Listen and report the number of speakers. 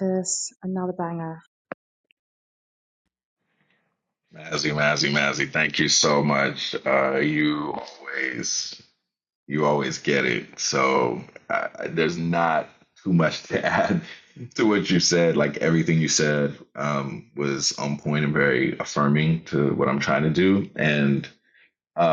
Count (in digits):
2